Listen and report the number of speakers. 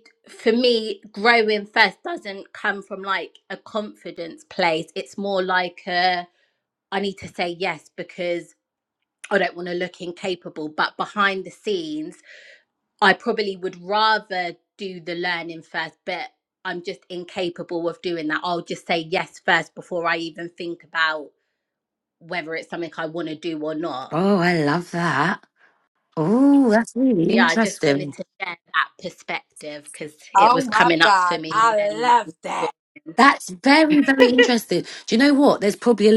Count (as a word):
three